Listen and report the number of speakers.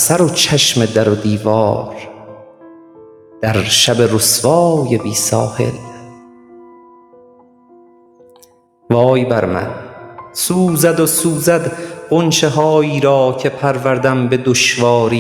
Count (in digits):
1